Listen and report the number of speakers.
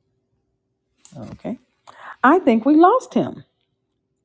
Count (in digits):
1